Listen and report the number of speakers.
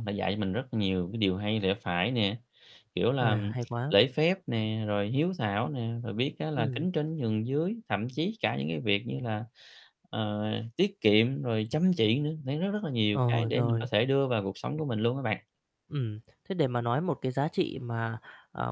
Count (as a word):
two